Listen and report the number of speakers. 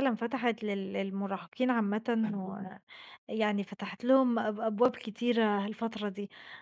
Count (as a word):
one